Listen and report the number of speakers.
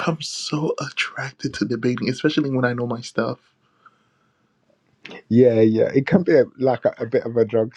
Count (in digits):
2